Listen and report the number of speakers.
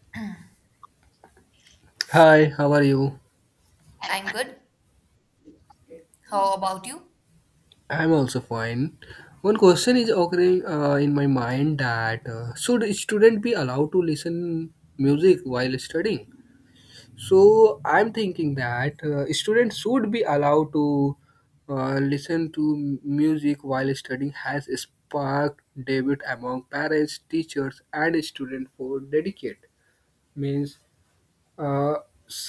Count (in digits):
2